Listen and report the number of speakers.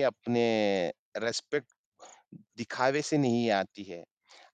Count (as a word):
one